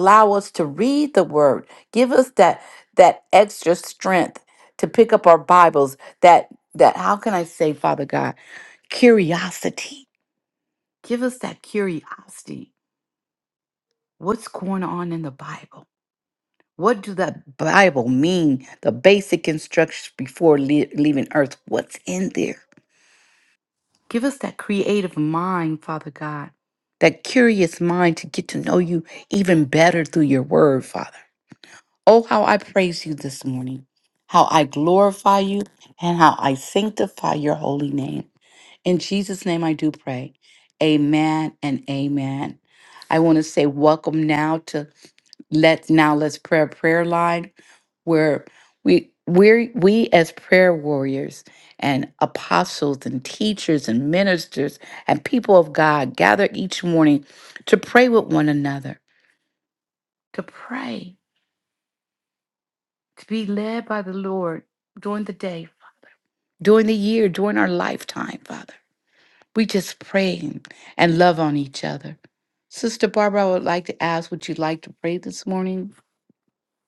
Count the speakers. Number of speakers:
one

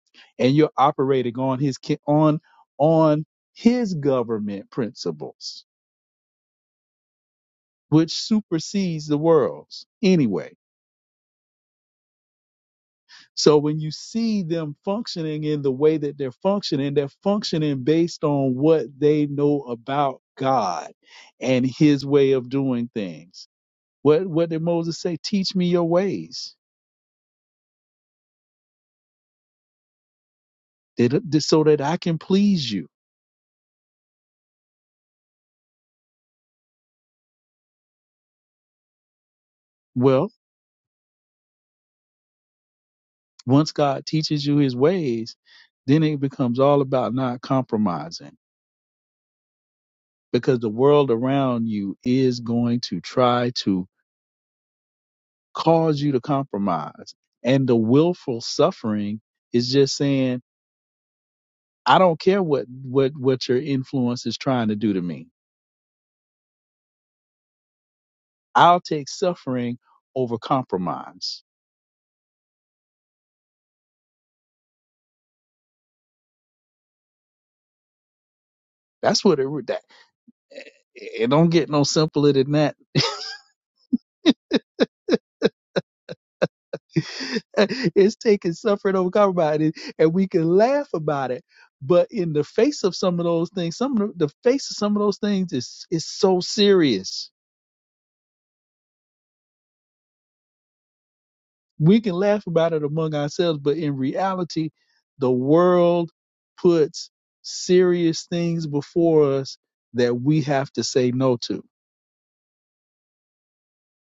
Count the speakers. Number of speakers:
one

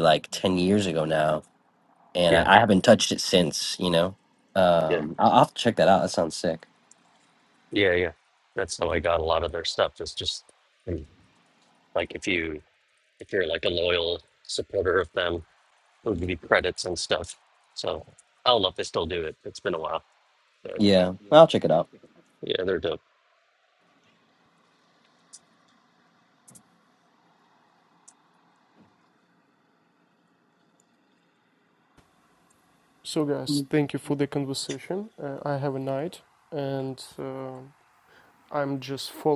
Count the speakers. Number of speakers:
three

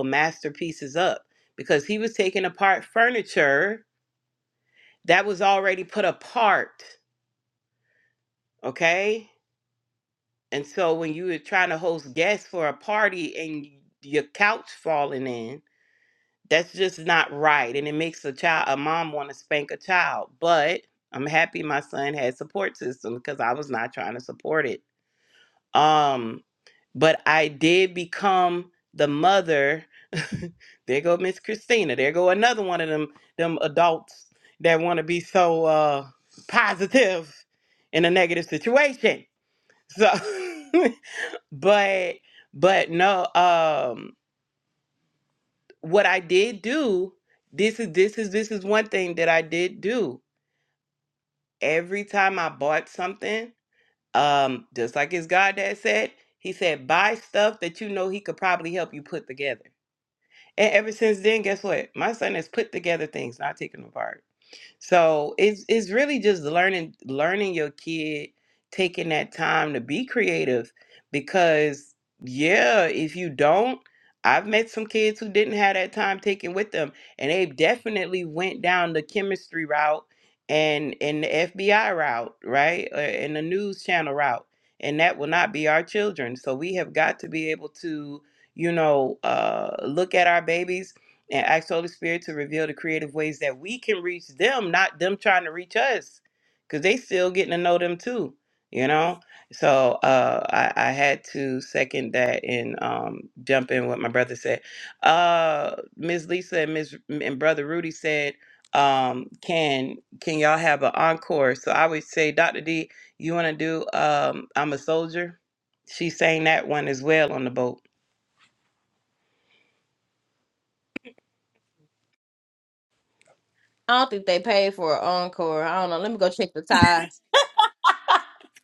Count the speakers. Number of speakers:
two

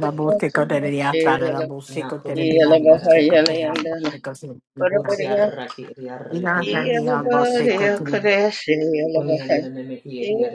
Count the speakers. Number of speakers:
three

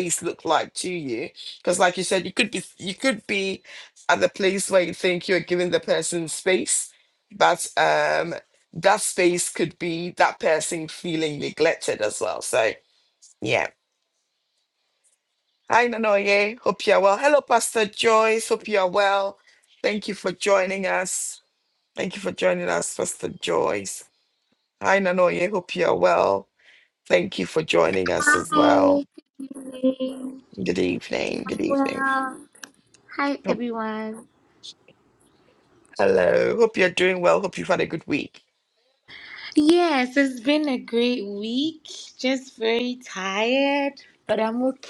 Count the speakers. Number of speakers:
two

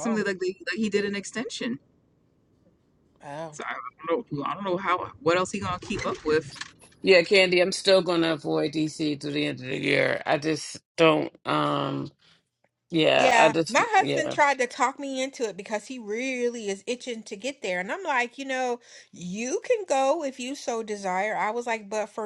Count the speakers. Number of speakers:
three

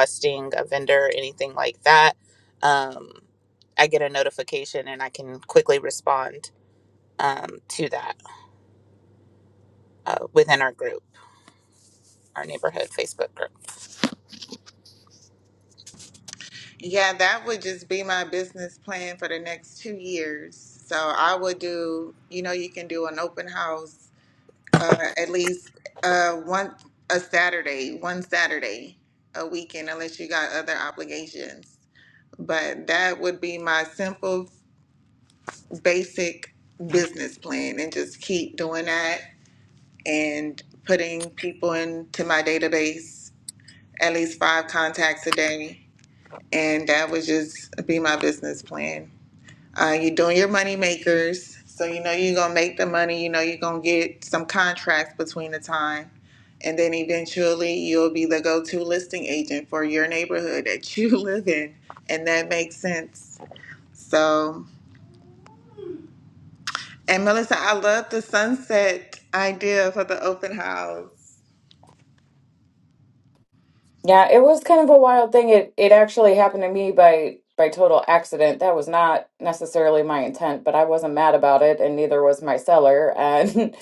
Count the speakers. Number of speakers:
three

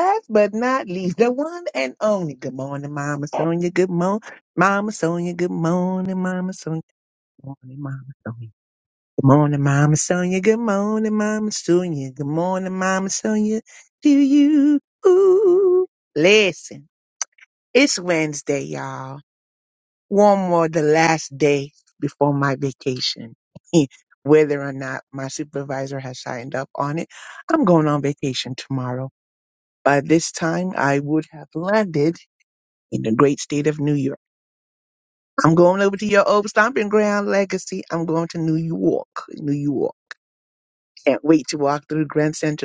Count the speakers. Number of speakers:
one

